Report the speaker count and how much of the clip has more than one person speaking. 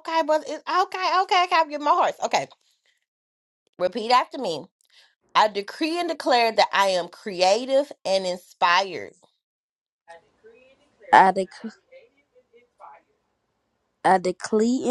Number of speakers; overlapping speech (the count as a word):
two, no overlap